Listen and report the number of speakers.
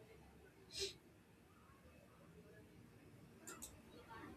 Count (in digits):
0